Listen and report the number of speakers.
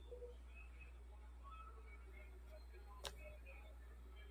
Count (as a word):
zero